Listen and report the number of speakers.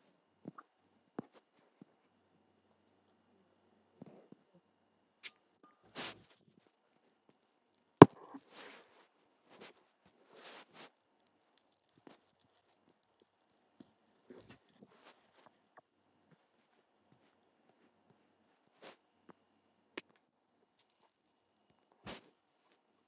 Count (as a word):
zero